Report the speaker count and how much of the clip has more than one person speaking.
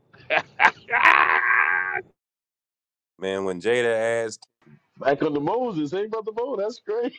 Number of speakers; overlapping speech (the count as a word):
three, no overlap